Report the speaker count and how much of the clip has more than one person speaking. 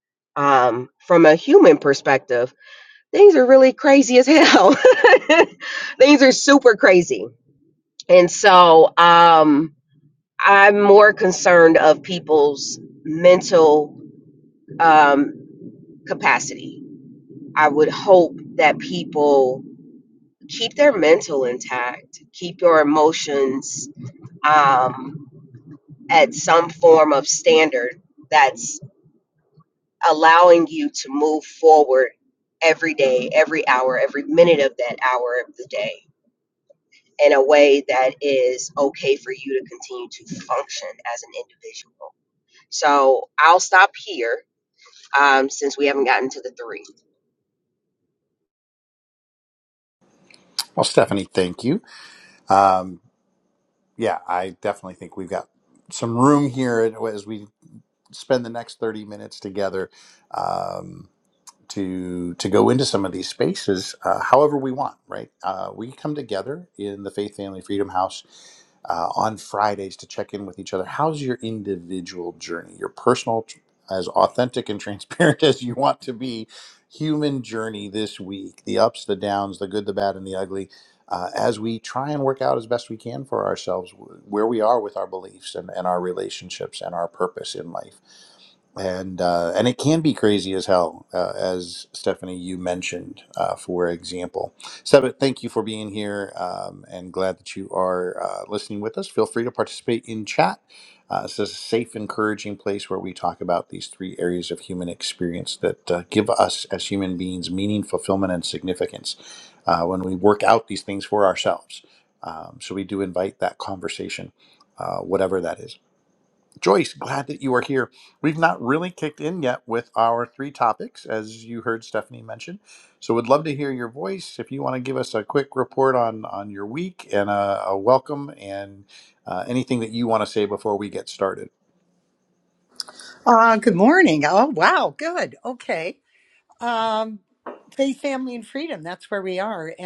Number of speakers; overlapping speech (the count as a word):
three, no overlap